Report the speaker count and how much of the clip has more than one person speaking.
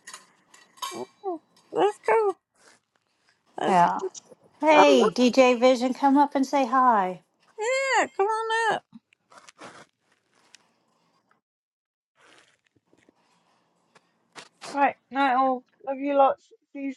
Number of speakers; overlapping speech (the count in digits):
3, about 4%